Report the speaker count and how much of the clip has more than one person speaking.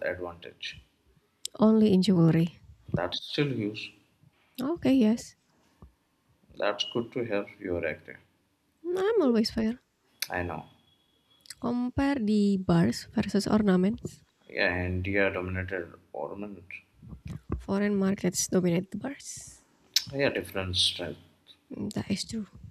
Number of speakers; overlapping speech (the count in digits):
2, no overlap